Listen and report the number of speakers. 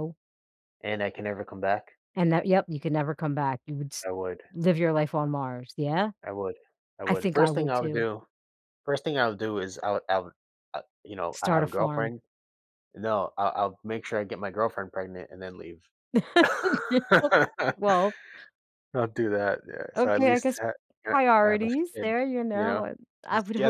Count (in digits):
2